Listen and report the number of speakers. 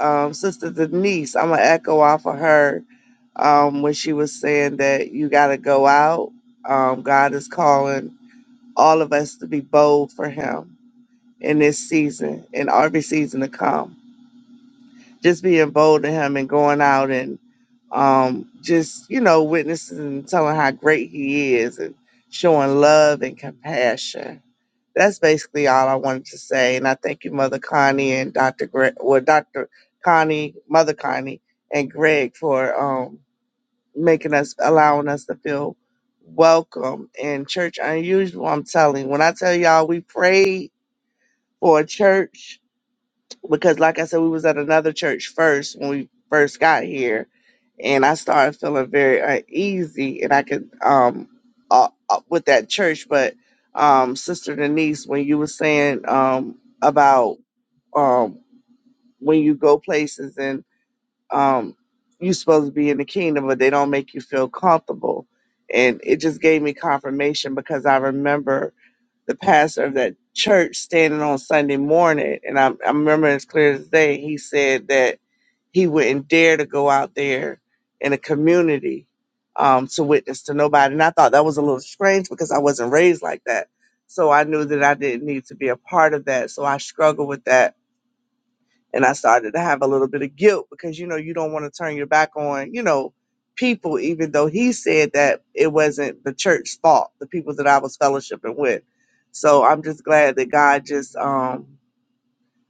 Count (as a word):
one